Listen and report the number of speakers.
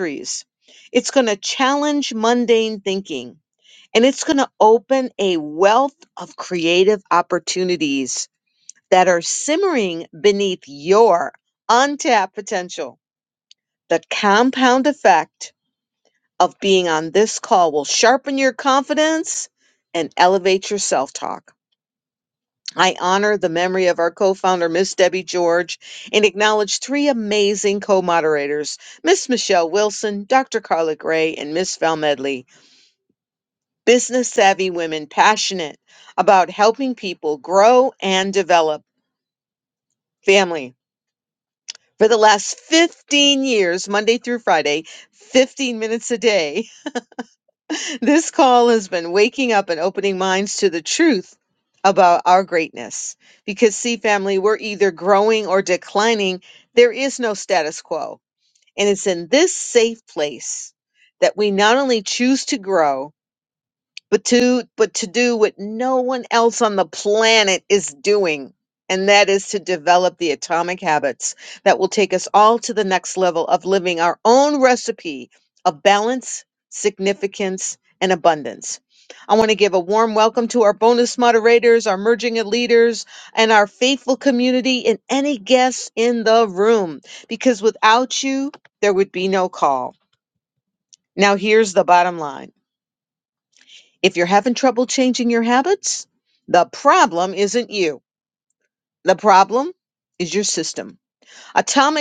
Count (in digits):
1